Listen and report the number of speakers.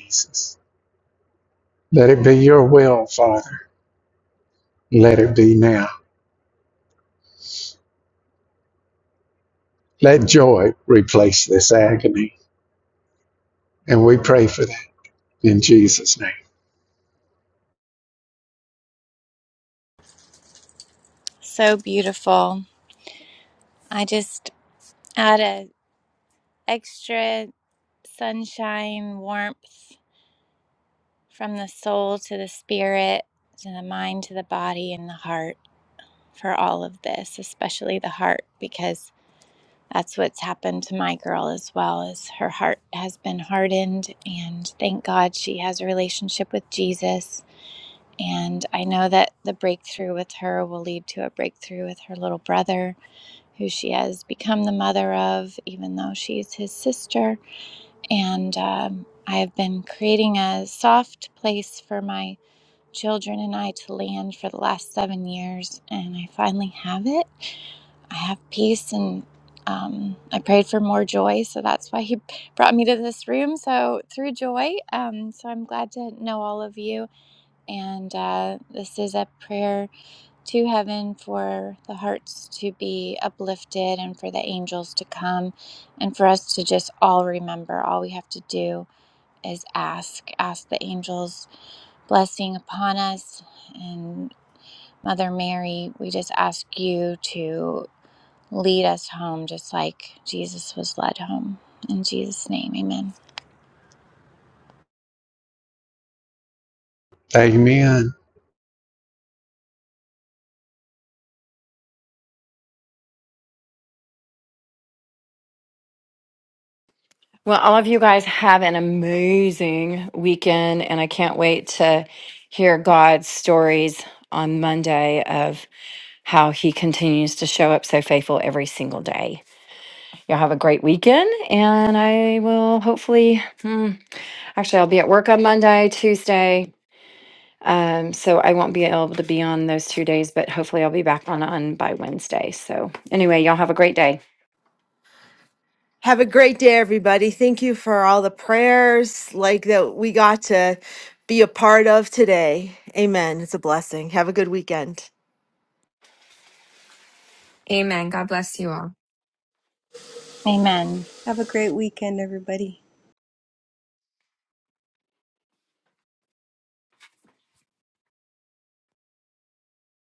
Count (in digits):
6